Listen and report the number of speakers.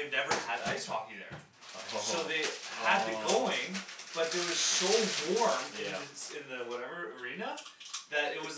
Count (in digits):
2